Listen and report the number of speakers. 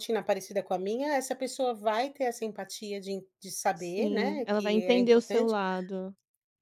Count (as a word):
two